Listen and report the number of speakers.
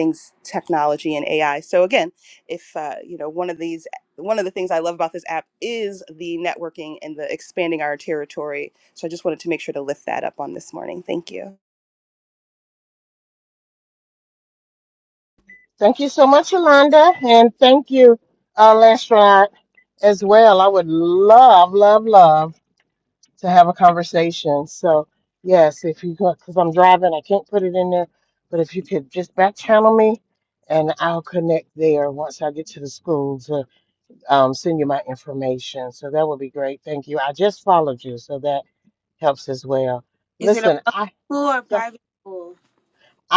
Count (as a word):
three